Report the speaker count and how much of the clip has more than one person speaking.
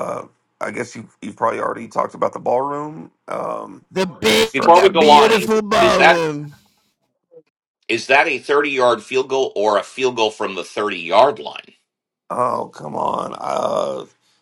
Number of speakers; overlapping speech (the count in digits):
3, about 11%